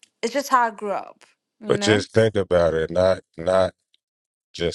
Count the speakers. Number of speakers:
two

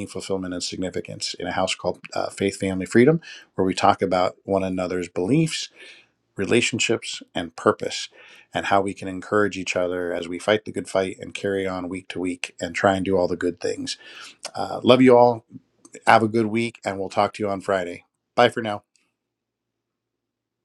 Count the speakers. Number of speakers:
one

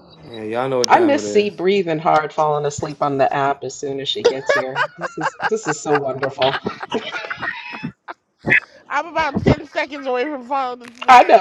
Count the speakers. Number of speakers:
three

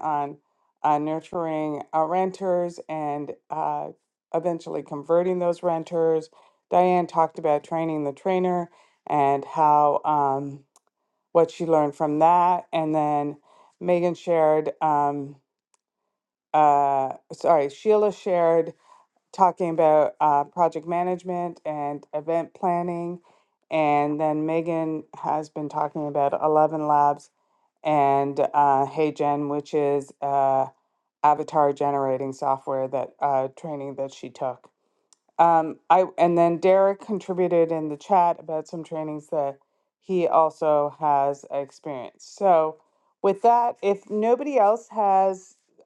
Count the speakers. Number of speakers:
one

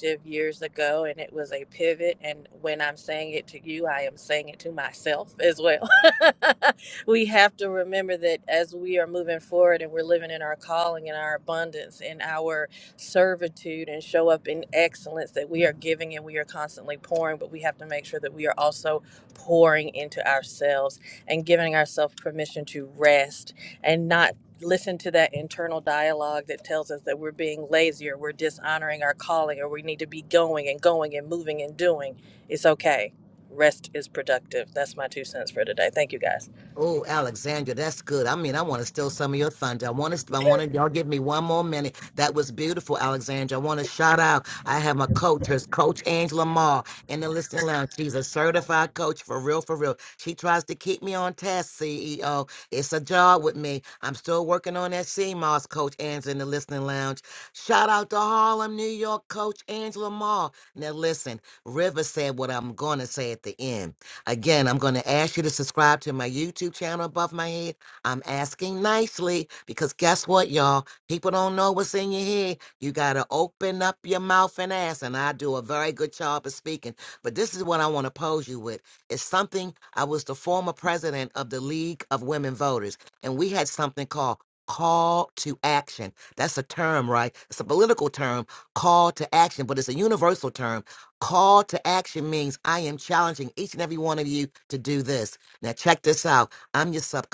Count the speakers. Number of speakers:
two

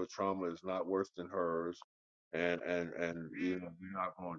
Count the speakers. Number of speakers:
one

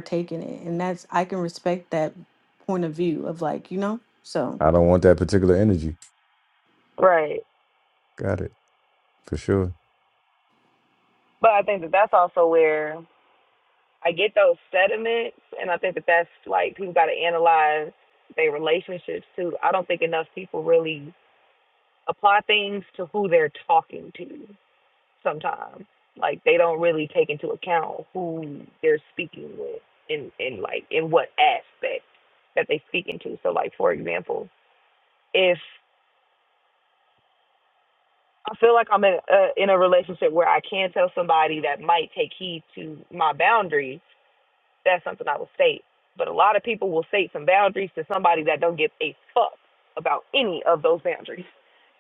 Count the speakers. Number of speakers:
three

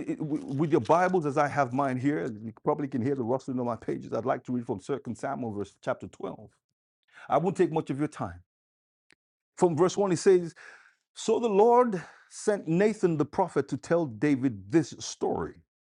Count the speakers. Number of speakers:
one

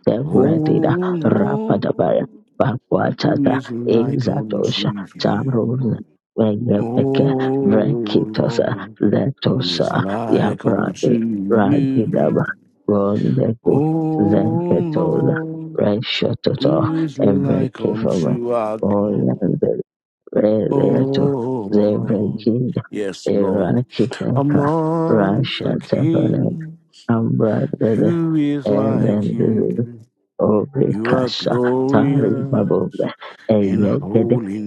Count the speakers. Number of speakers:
two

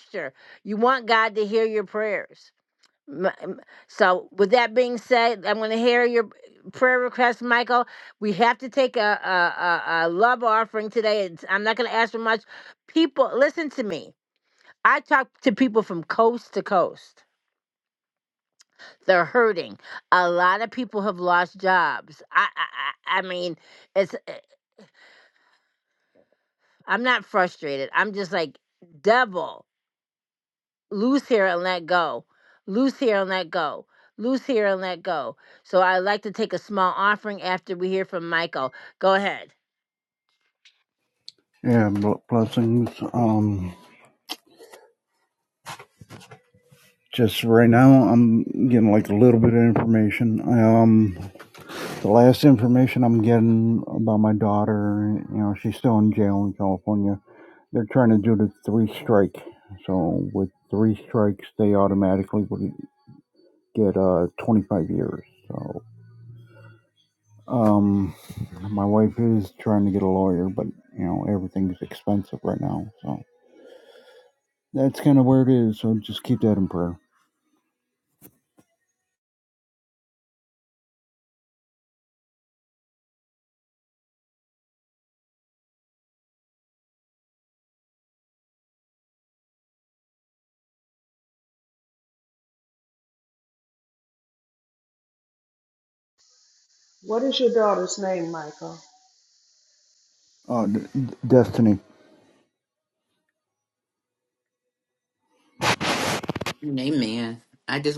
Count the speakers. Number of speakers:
four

